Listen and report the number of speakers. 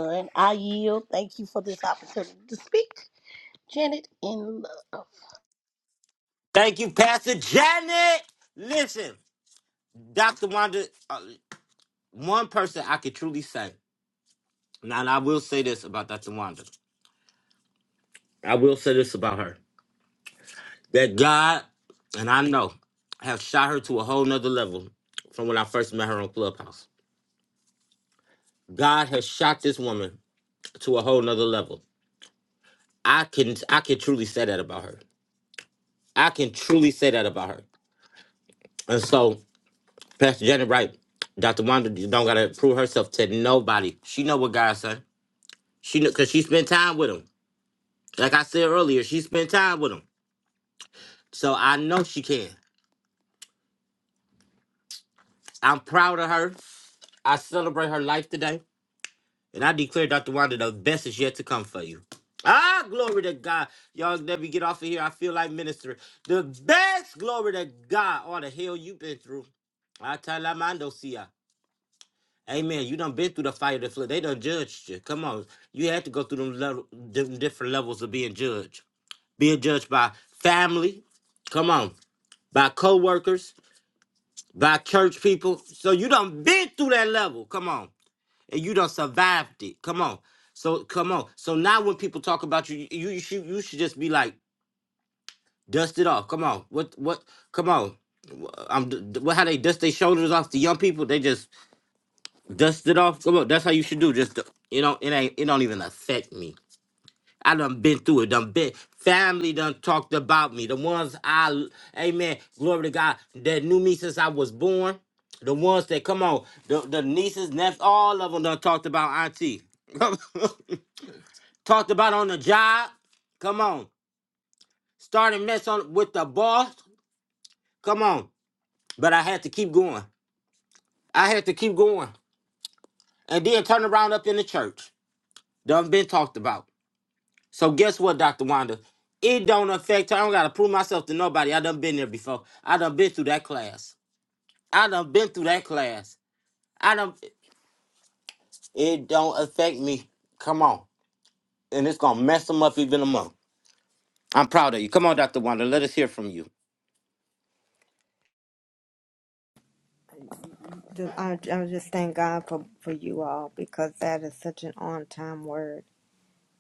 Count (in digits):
3